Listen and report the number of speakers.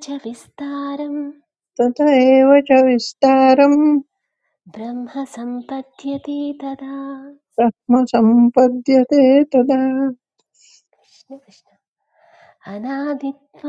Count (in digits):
2